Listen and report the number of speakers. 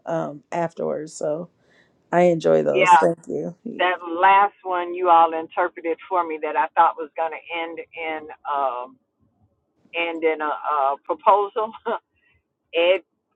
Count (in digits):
2